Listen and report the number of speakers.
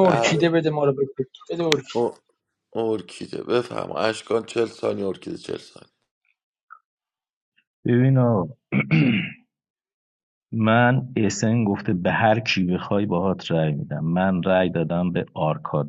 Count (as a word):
three